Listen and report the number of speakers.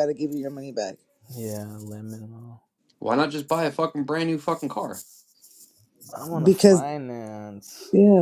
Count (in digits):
3